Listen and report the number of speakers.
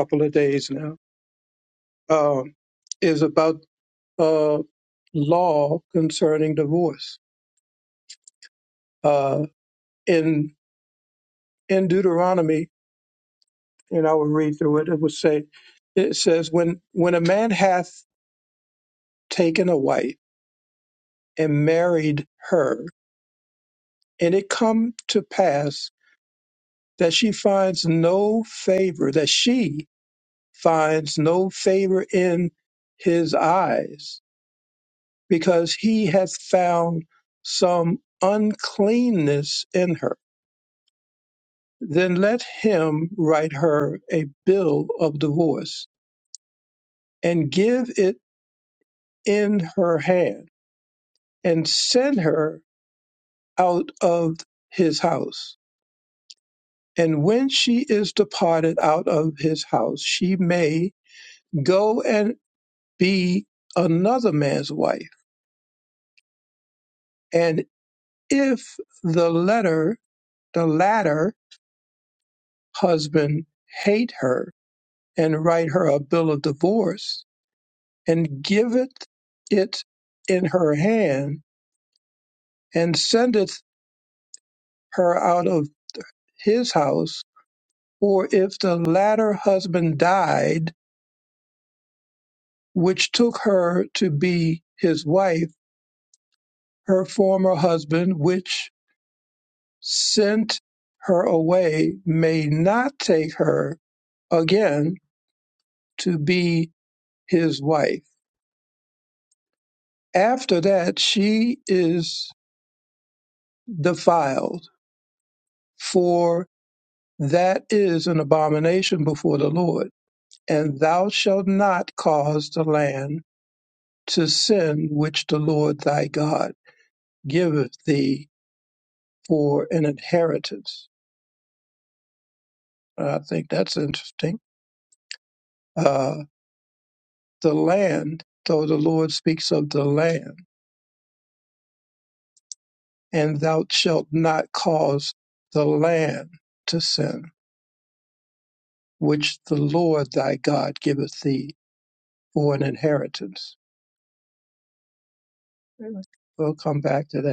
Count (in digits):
1